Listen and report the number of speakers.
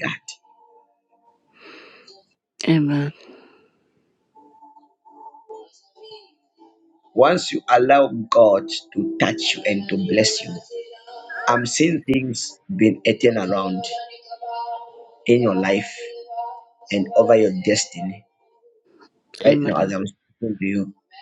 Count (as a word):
two